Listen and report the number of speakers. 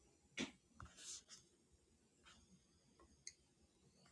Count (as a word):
zero